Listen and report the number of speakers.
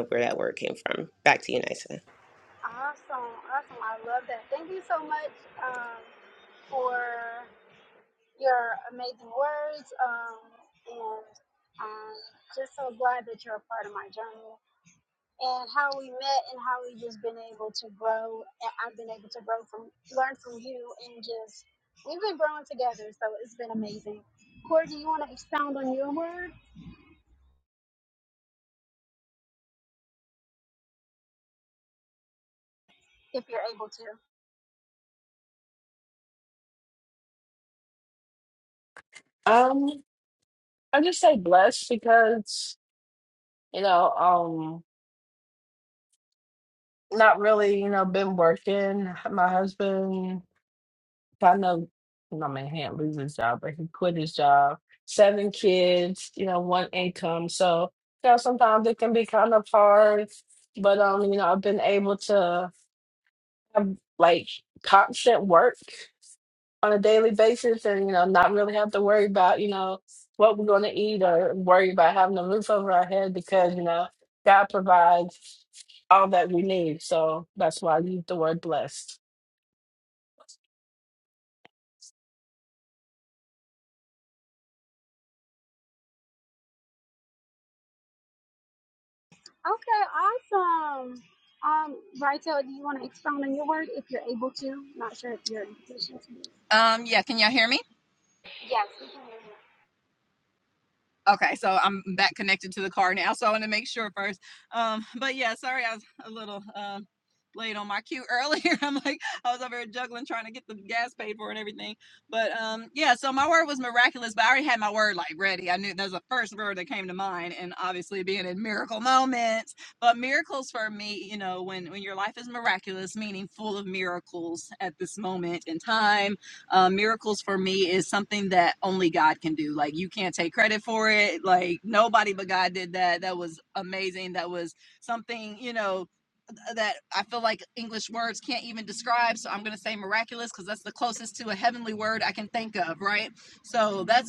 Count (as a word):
four